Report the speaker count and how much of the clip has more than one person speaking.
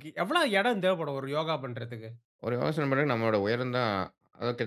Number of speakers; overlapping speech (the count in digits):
2, no overlap